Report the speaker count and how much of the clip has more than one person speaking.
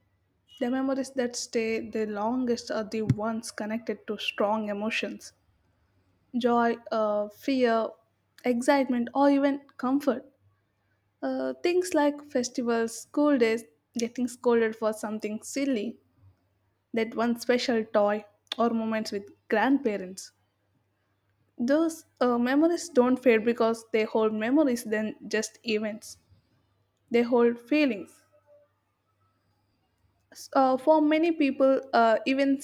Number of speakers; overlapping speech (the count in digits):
1, no overlap